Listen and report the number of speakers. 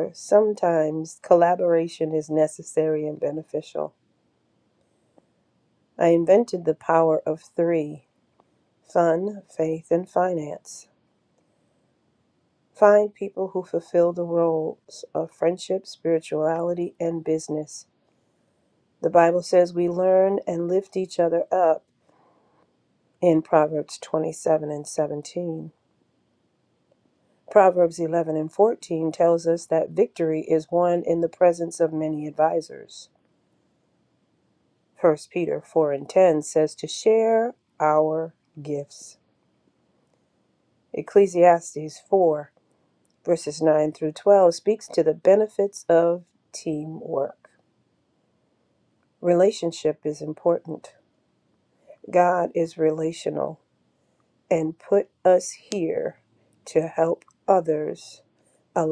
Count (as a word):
one